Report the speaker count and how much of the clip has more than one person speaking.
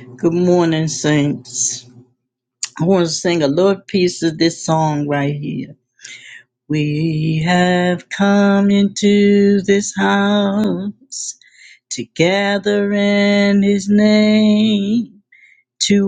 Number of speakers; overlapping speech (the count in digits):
1, no overlap